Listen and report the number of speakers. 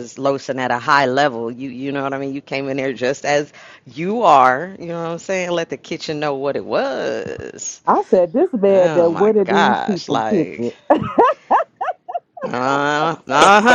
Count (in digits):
2